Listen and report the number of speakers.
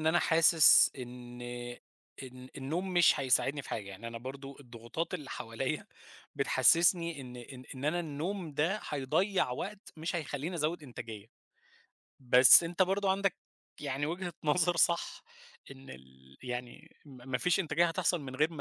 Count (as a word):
one